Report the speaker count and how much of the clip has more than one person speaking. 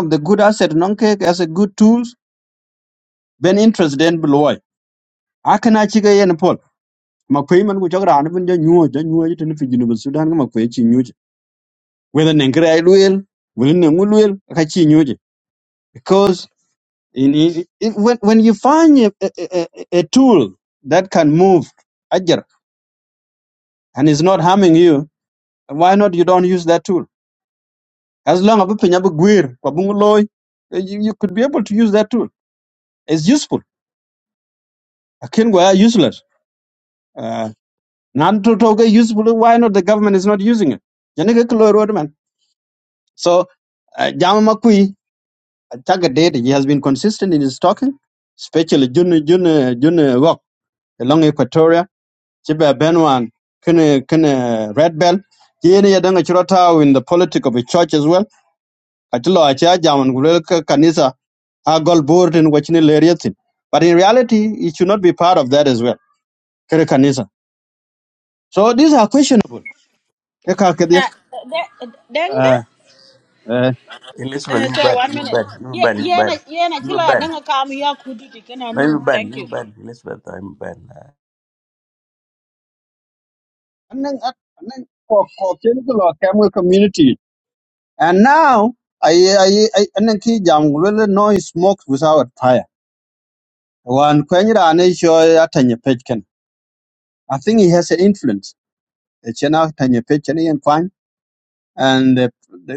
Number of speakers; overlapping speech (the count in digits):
3, about 3%